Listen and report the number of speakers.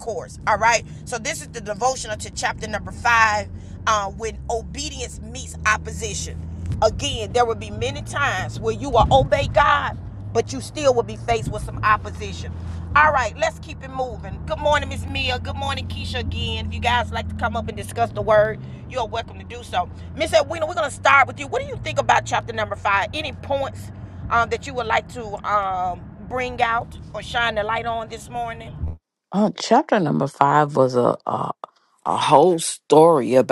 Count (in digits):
2